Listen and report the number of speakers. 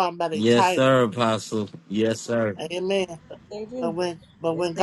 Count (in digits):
2